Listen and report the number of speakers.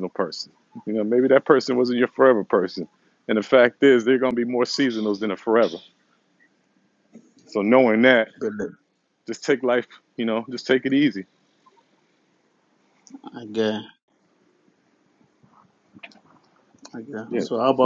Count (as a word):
two